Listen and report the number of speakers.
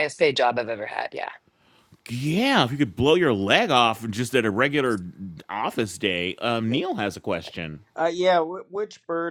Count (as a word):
three